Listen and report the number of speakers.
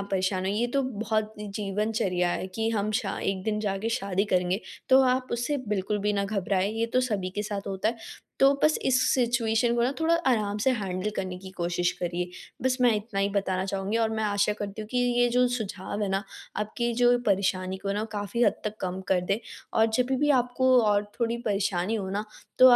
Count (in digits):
1